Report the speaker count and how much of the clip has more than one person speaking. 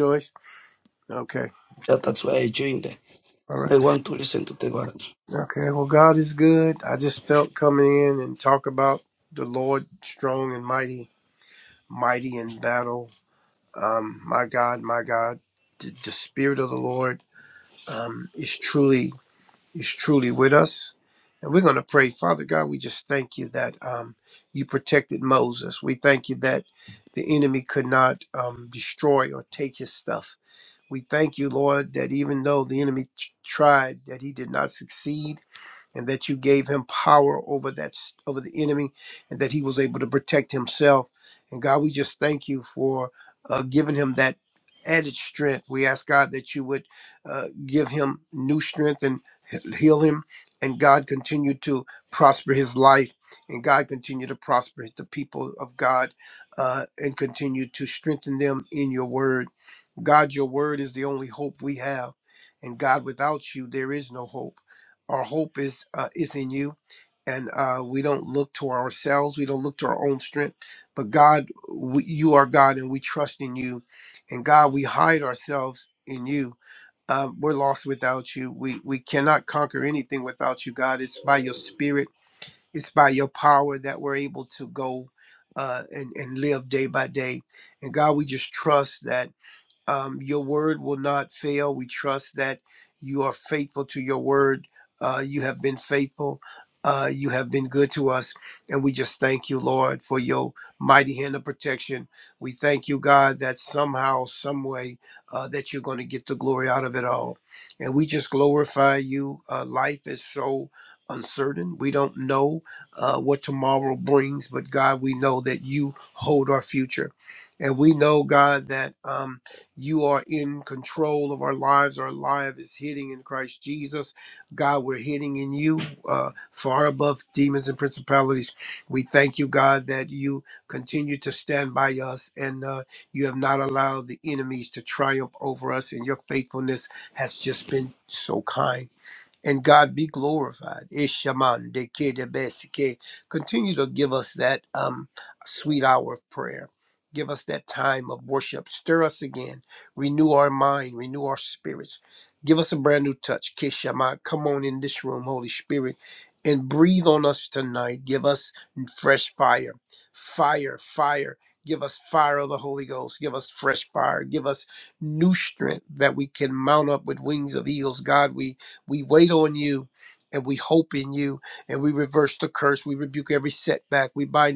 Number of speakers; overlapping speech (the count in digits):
2, under 1%